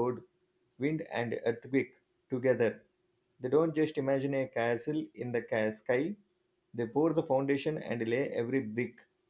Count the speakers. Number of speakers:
1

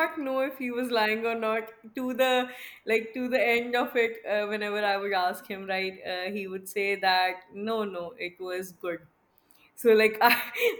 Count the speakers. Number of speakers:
1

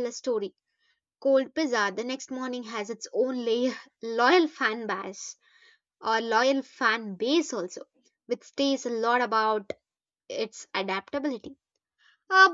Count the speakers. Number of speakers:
1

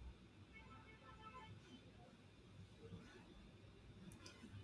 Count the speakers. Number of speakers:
0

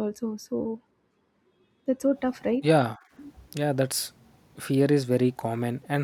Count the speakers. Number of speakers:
2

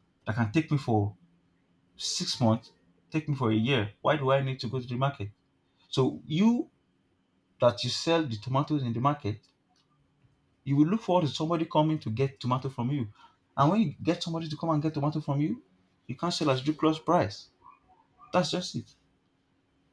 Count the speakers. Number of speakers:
1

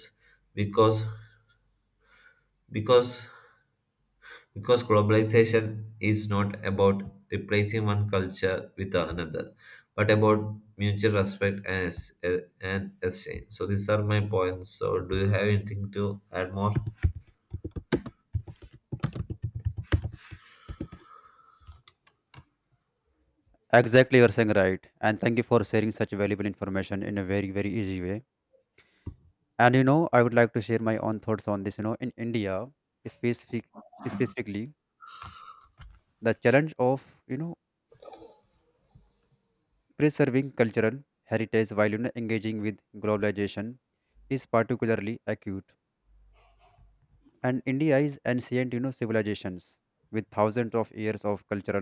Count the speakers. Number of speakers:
2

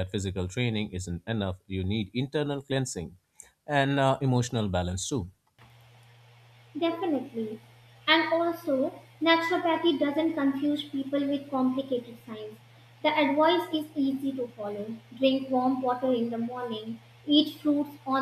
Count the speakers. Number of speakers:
2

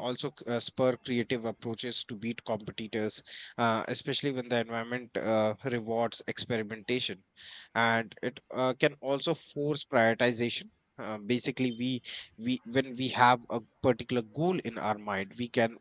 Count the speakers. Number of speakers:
1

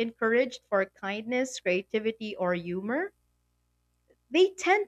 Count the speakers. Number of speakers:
1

